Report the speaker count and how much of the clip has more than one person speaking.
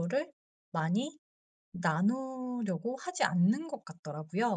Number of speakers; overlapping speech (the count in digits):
1, no overlap